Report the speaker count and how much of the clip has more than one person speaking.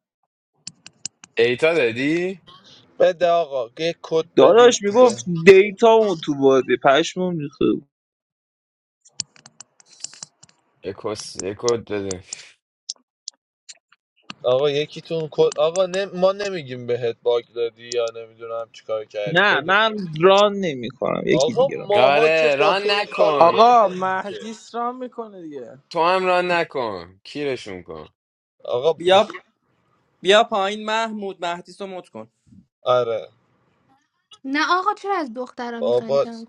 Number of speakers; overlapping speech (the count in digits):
6, about 14%